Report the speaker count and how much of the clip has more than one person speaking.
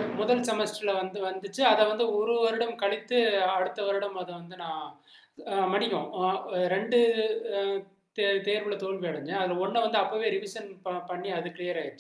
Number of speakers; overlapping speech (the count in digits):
1, no overlap